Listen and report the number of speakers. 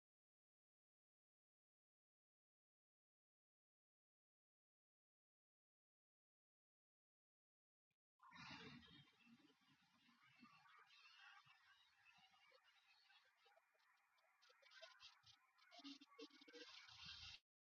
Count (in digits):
0